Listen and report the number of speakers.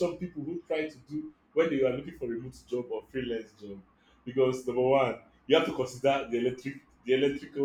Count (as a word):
one